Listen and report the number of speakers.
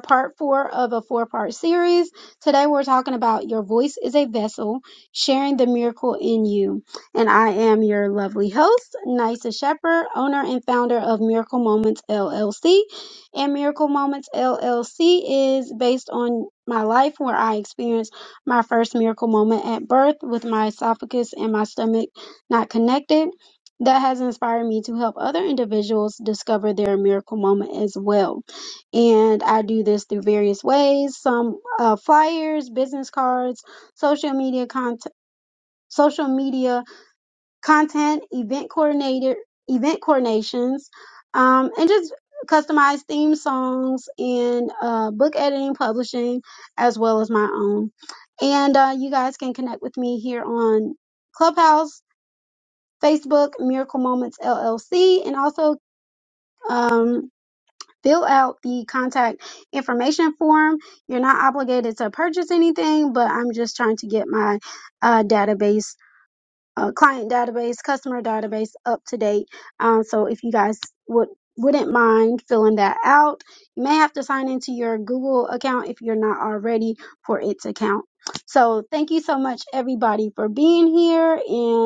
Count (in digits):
1